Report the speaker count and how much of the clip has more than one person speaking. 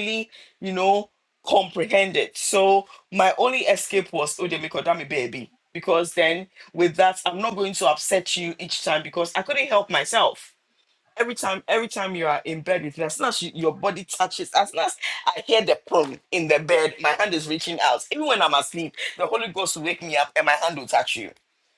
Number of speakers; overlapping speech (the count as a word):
one, no overlap